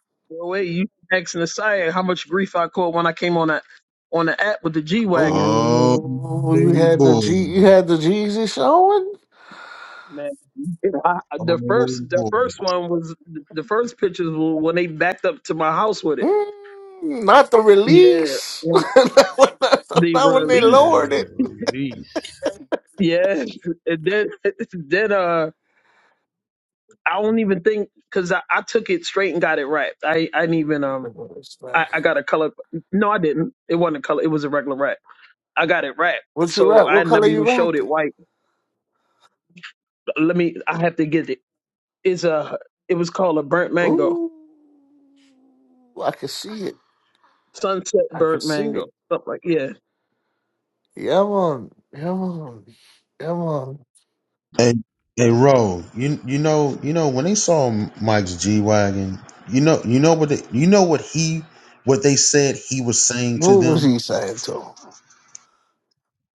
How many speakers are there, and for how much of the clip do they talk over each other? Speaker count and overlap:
4, about 10%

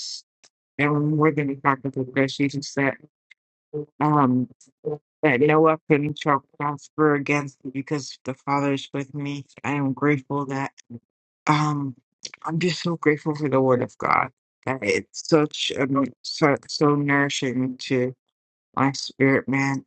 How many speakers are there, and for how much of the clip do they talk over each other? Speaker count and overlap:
1, no overlap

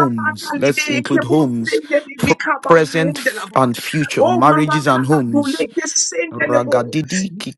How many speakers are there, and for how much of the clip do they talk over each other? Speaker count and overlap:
2, about 46%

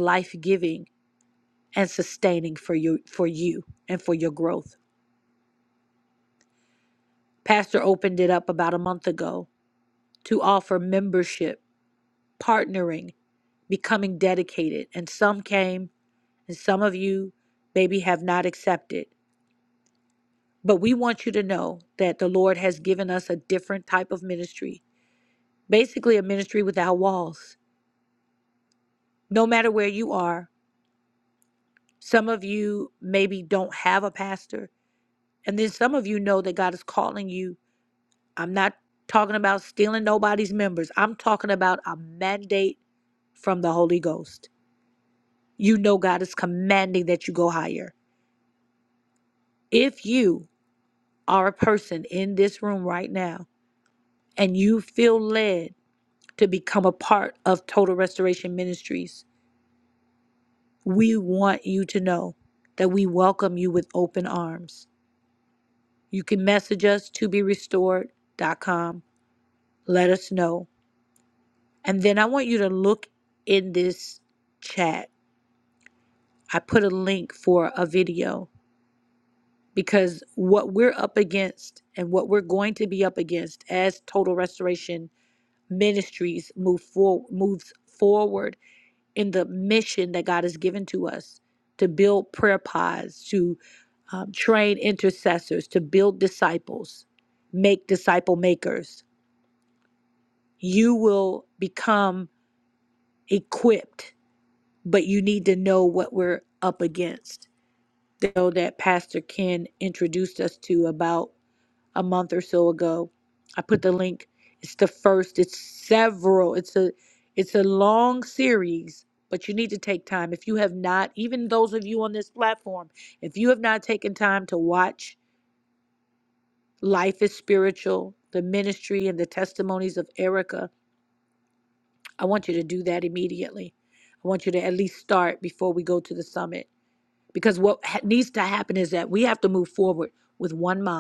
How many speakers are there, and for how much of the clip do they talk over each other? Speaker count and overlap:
1, no overlap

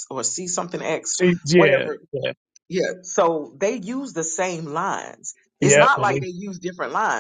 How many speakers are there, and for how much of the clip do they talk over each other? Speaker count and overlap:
2, about 14%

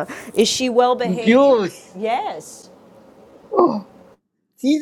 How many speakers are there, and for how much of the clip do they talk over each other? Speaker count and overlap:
2, about 11%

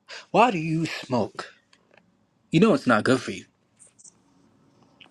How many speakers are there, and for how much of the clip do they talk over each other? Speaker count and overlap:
1, no overlap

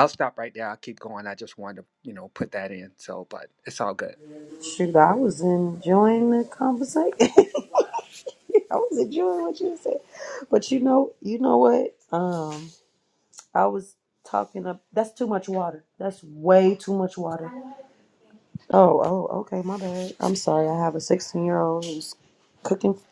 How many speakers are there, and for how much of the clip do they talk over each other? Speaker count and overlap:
2, no overlap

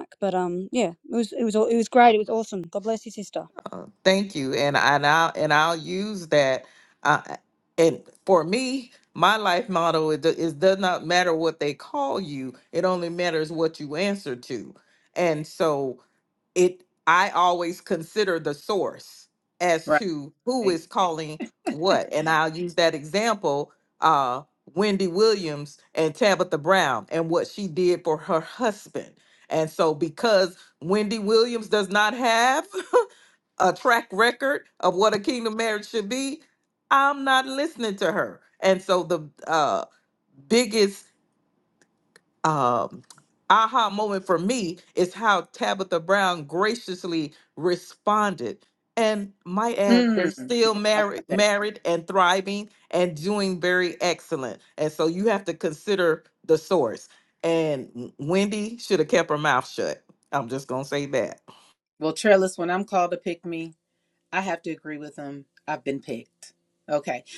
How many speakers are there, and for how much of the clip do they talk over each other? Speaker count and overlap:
3, about 3%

